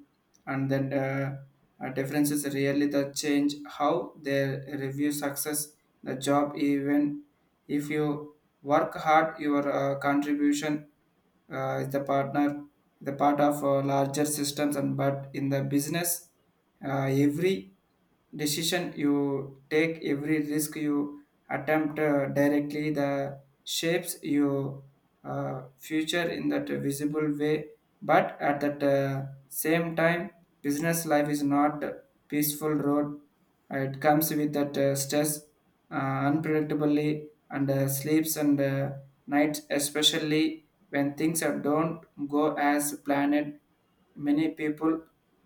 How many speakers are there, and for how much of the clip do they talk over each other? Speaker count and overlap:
1, no overlap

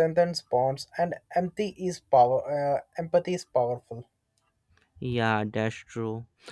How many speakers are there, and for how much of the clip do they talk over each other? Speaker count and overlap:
2, no overlap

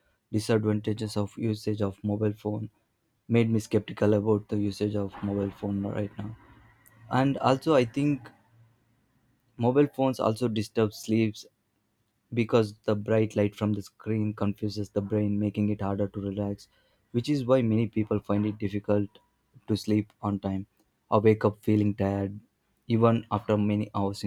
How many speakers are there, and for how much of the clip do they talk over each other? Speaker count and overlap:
1, no overlap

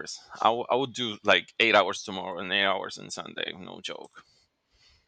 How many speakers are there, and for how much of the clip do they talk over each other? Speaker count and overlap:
1, no overlap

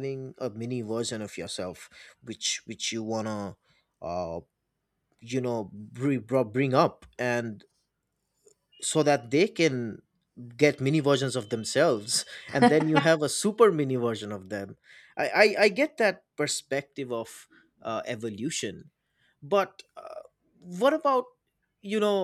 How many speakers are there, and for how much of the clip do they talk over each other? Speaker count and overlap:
1, no overlap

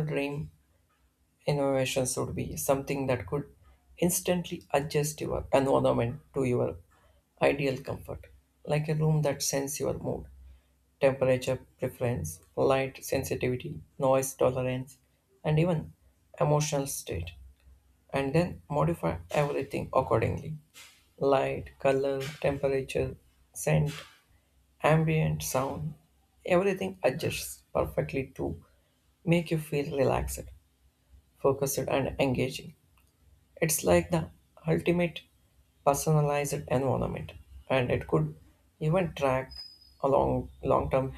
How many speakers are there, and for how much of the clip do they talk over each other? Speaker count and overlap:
1, no overlap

